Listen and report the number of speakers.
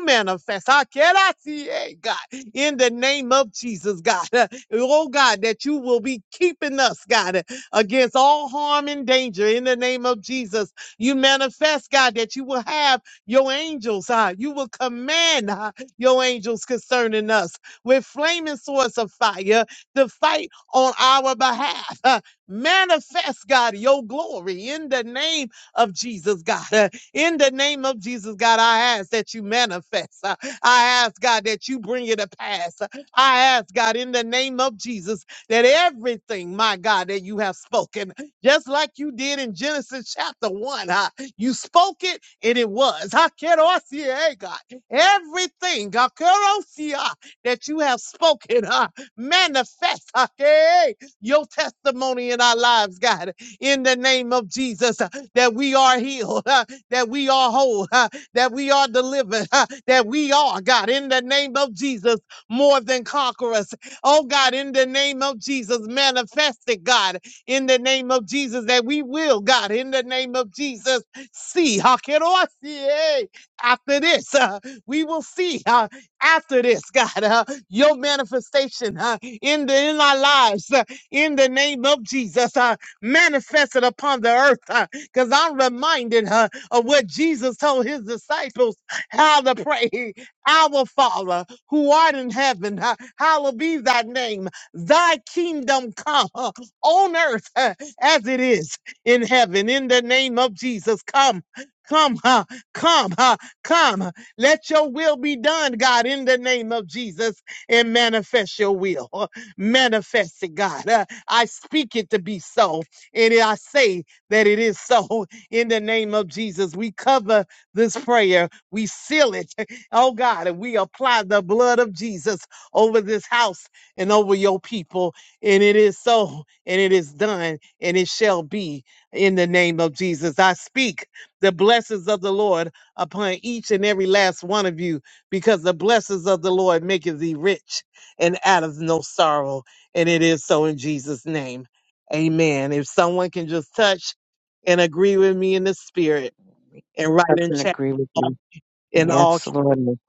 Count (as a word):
two